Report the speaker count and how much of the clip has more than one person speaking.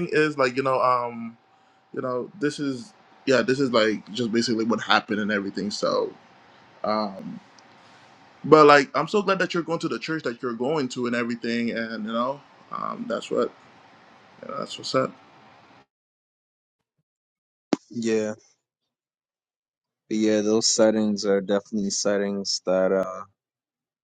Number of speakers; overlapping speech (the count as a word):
two, no overlap